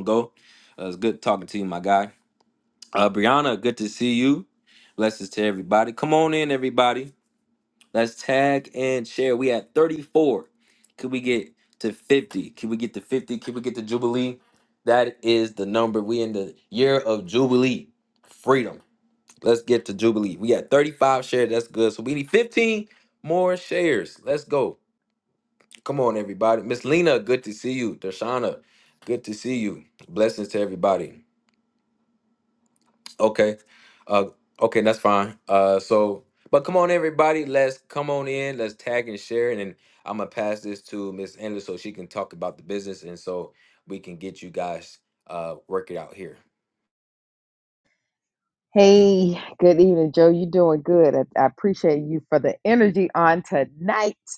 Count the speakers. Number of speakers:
two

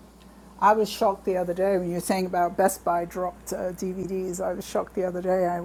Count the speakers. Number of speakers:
one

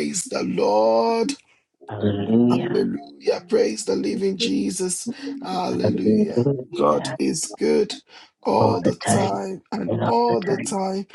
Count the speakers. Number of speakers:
two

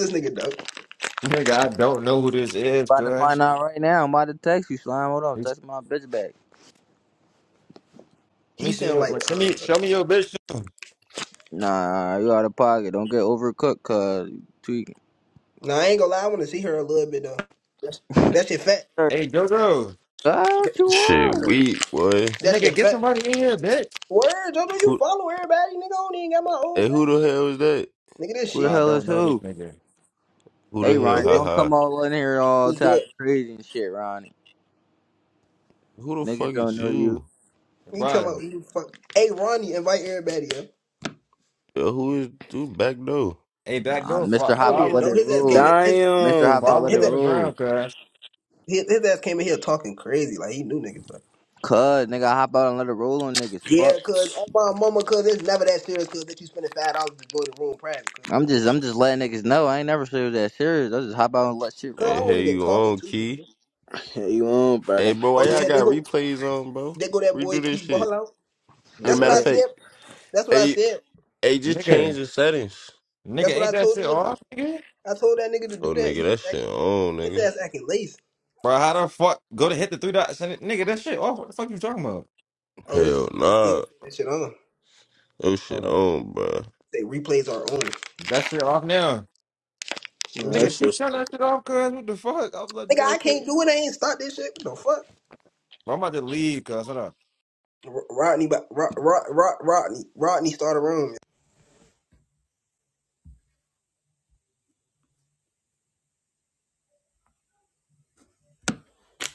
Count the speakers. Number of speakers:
five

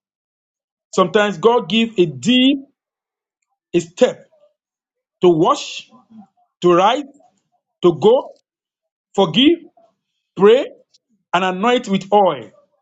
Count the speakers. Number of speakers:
one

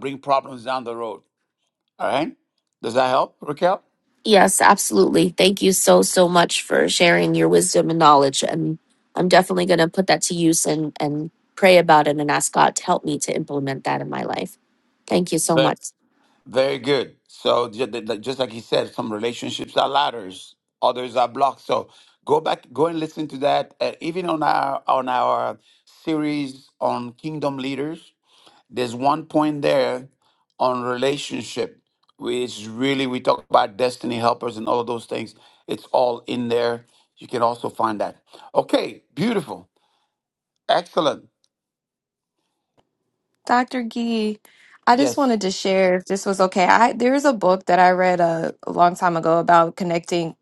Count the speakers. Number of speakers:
three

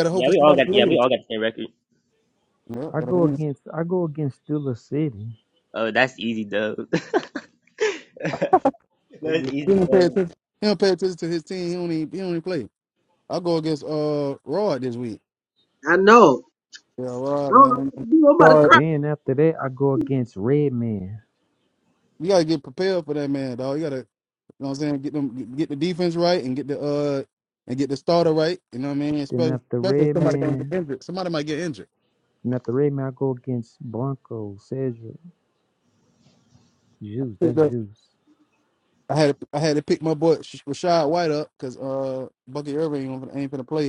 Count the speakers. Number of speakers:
four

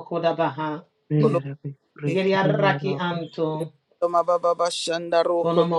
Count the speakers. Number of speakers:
three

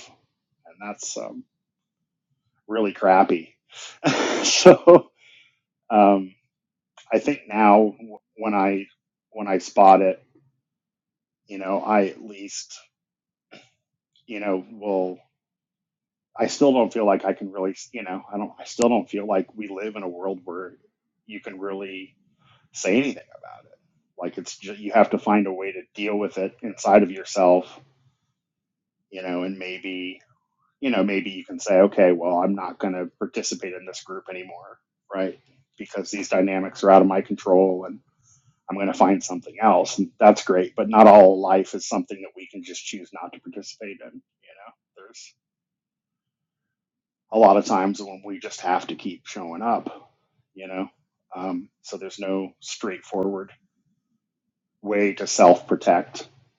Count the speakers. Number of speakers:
one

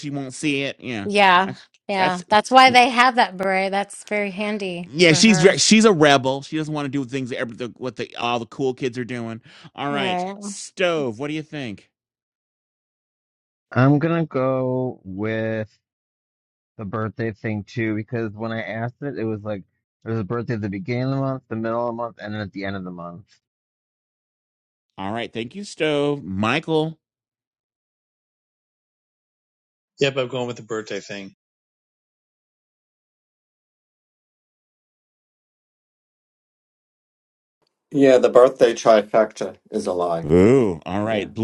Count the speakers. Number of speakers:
five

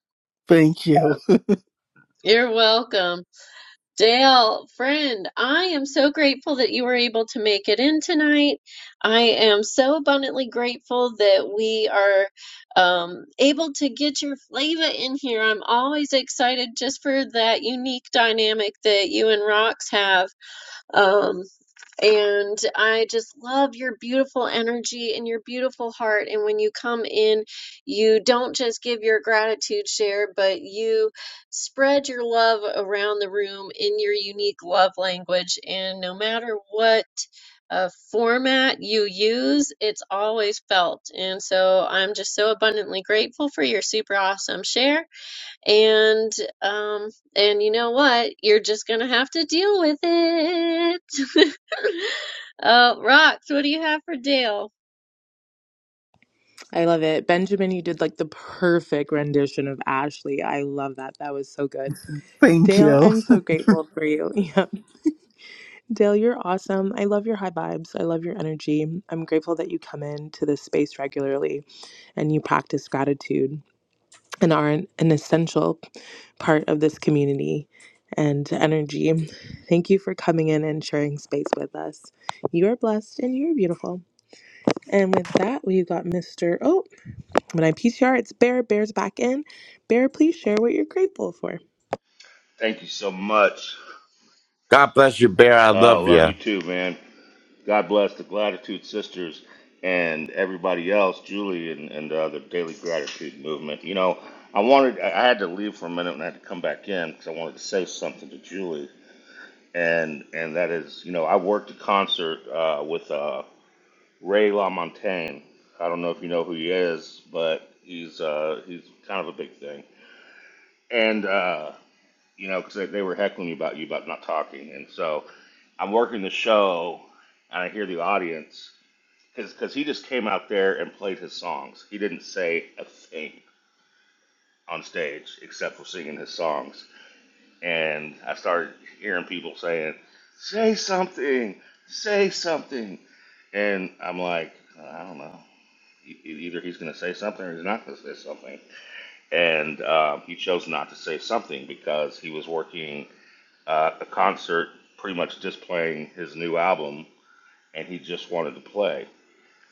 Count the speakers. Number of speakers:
five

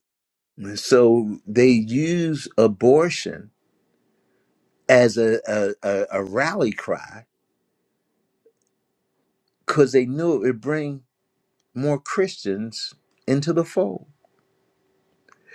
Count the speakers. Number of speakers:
one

